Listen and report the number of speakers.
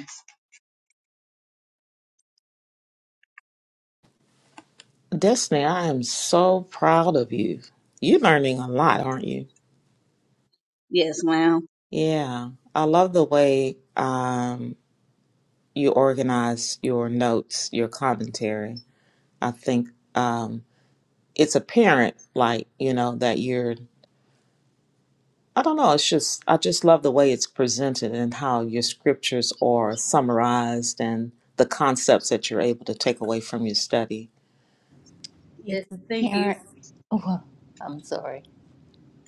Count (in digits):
3